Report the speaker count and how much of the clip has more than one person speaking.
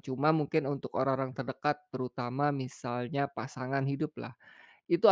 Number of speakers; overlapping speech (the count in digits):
1, no overlap